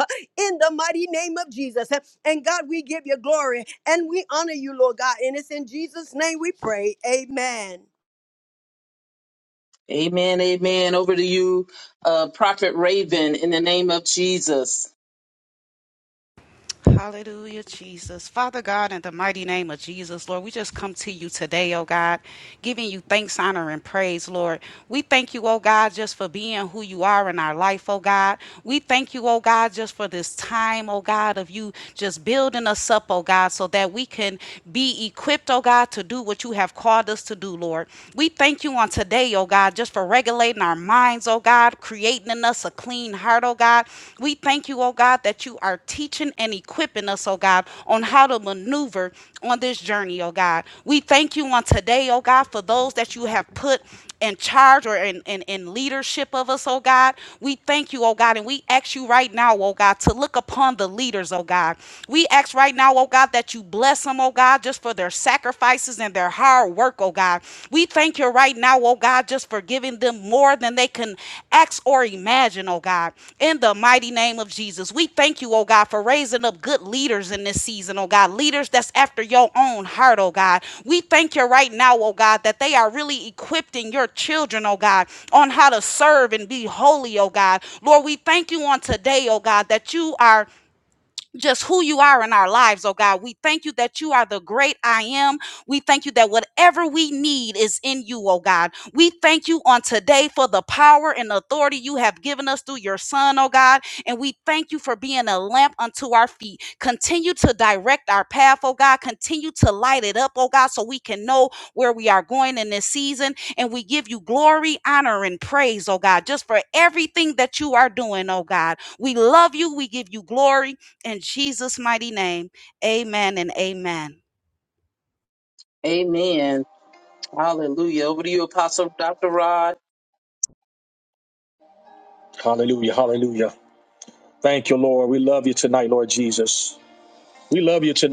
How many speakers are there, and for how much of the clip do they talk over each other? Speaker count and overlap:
4, no overlap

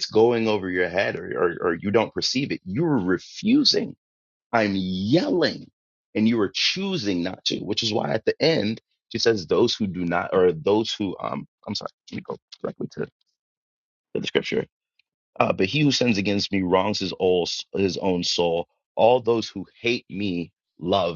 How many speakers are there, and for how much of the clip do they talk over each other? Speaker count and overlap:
1, no overlap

